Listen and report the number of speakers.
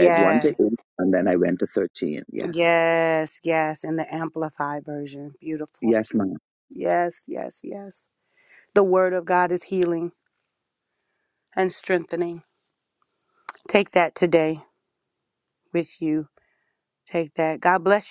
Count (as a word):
two